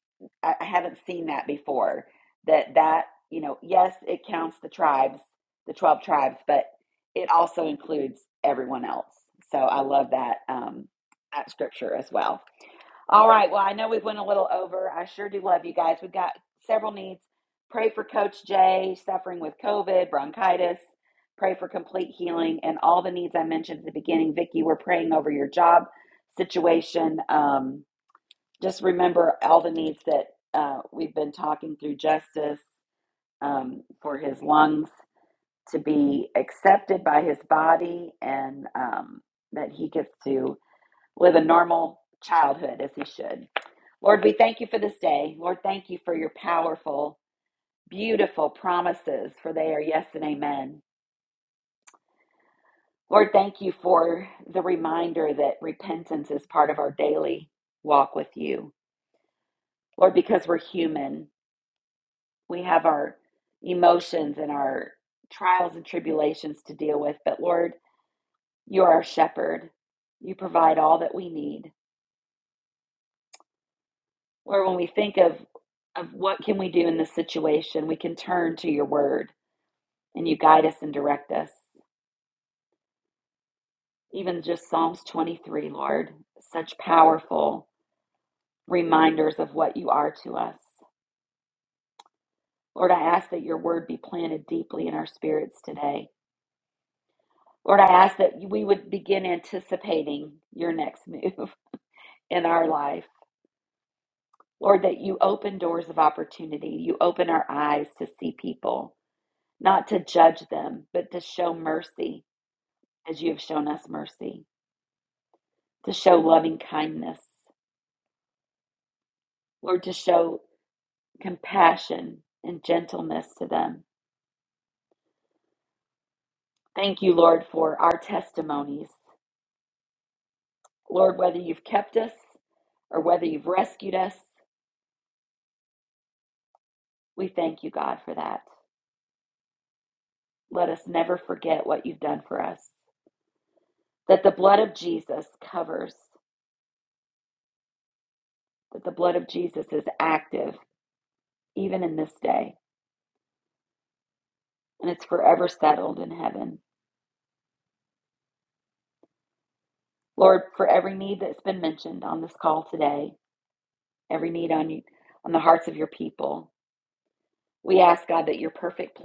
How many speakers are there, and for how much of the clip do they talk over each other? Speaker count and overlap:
1, no overlap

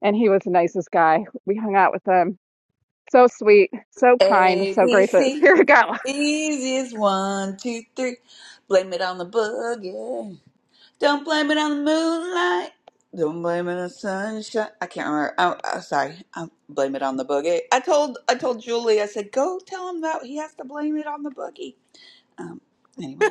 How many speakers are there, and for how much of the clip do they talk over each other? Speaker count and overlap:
2, about 5%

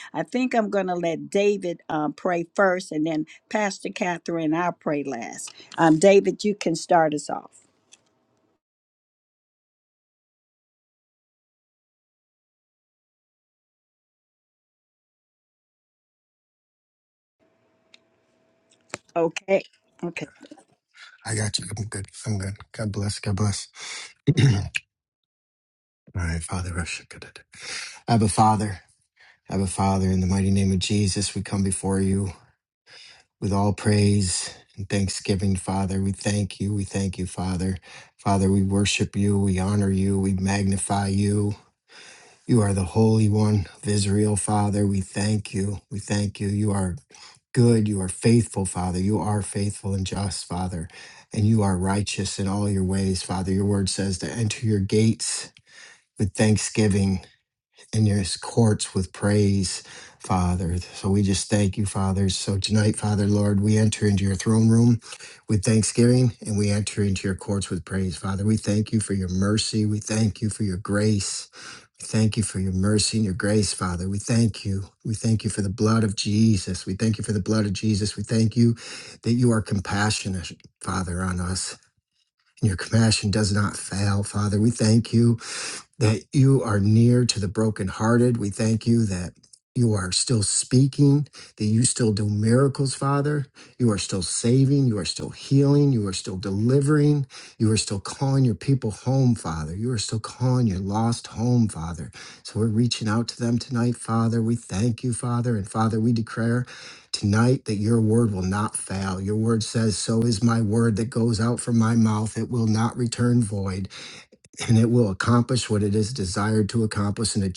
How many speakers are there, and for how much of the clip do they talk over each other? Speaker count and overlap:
2, no overlap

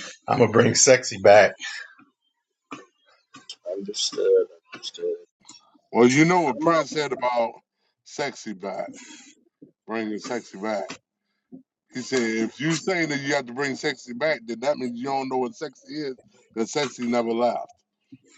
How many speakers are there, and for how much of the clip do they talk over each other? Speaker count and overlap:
3, about 2%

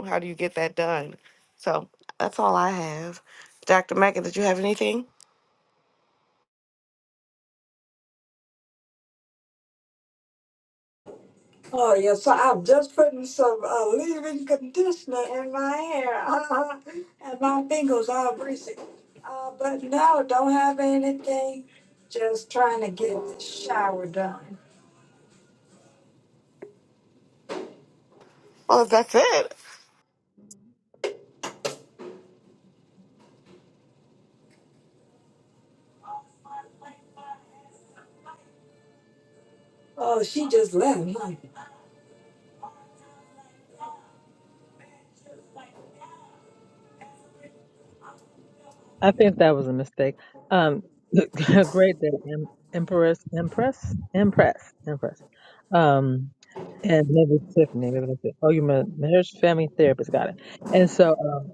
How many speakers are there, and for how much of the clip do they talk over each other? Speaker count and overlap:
3, no overlap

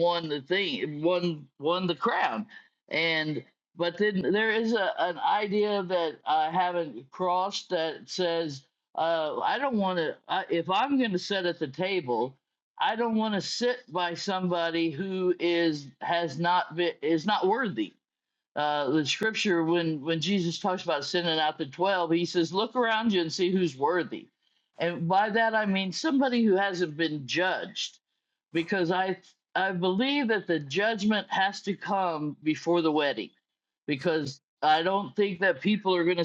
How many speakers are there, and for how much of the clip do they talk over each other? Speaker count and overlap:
1, no overlap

